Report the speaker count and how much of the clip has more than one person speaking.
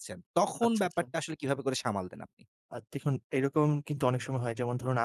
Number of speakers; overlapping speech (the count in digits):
2, about 9%